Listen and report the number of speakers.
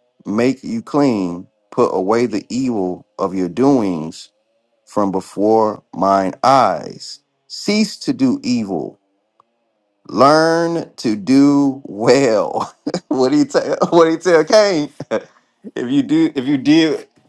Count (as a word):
one